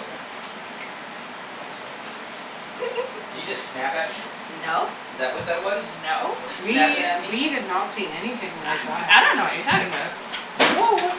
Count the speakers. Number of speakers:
three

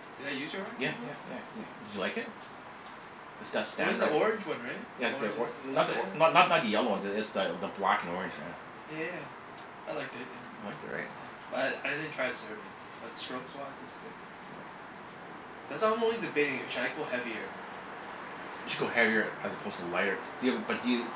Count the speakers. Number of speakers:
two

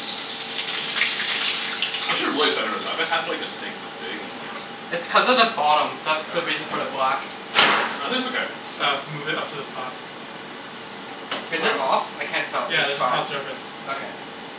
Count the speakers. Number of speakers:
three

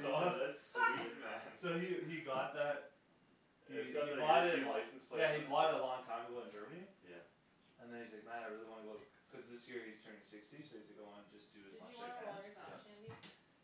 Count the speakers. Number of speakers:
three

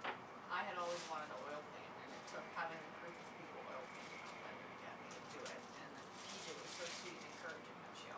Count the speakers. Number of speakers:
one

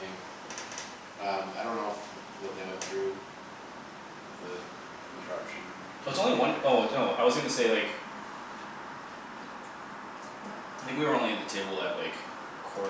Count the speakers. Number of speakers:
two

